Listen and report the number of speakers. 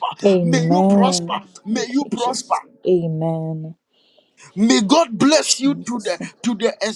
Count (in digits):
2